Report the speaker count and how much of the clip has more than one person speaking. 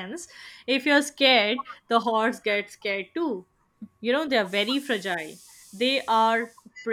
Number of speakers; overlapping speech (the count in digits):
1, no overlap